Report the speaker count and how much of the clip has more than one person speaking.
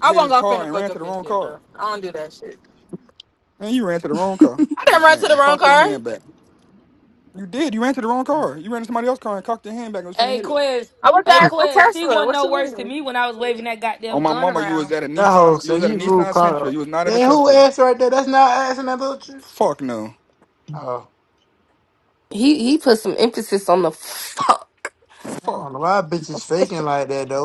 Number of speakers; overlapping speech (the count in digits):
5, about 29%